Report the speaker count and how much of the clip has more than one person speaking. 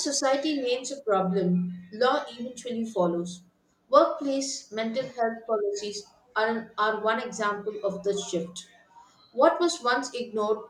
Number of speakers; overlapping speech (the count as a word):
one, no overlap